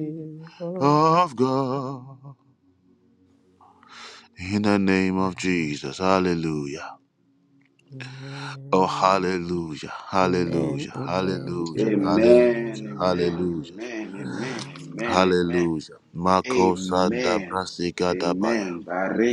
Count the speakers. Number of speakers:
three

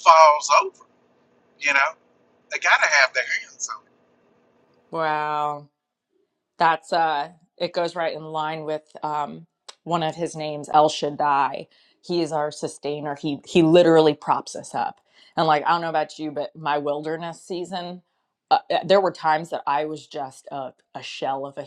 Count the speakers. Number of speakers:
two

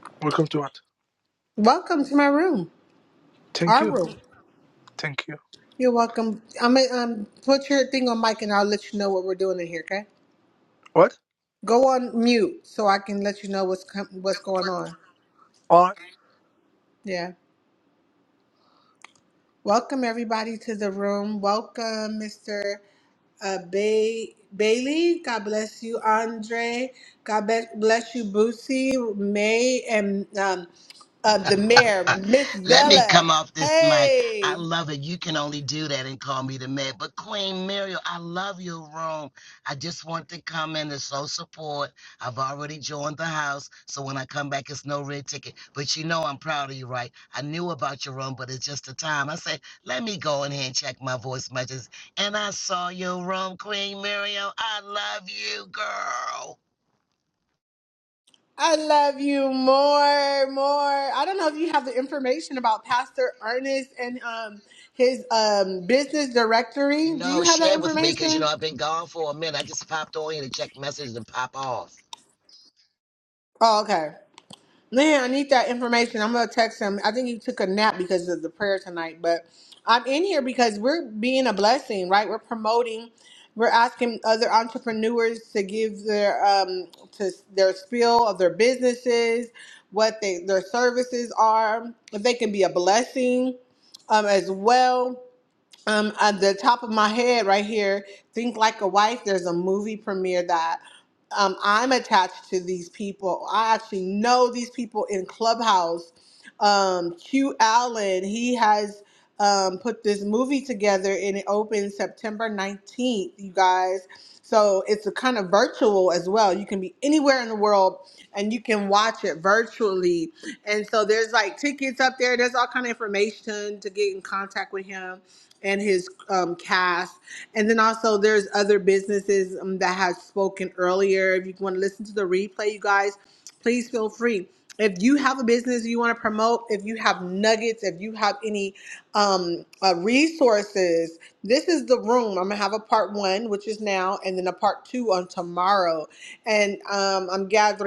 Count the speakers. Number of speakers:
three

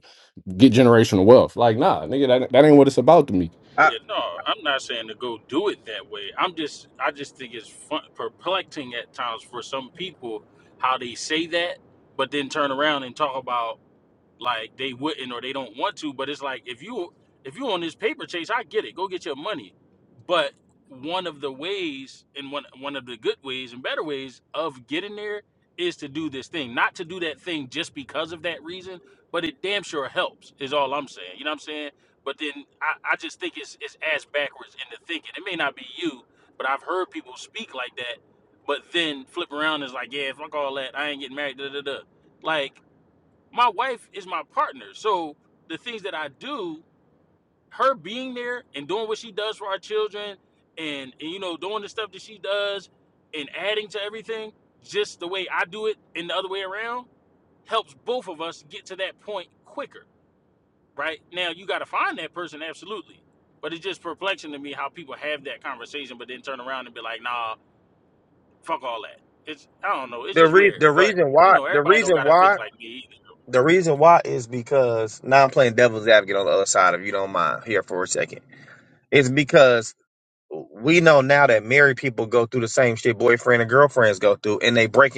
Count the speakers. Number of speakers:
three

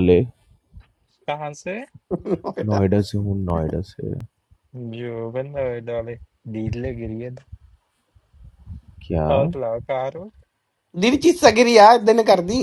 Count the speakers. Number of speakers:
three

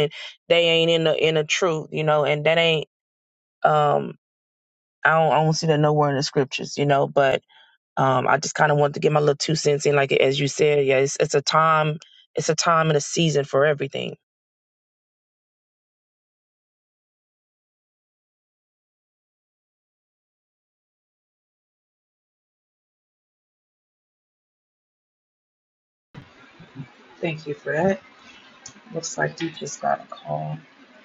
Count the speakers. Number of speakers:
two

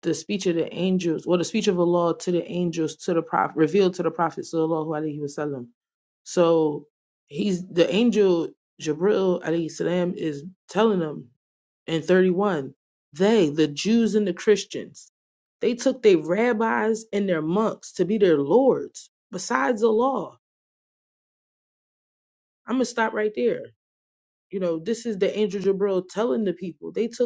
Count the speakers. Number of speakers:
one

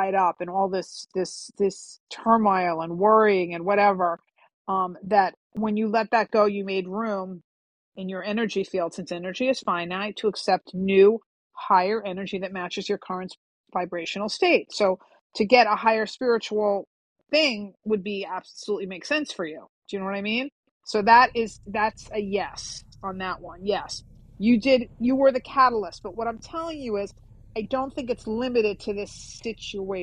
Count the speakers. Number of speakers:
one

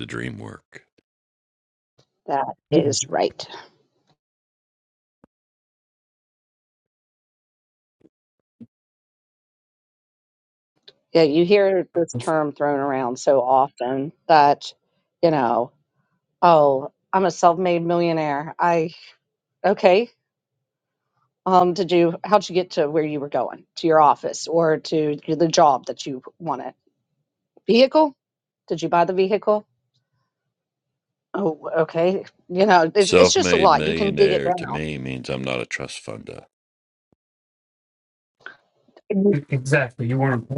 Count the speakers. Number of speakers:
three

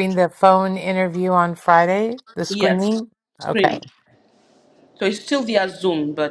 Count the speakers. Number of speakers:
two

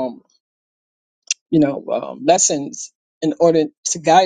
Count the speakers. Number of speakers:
one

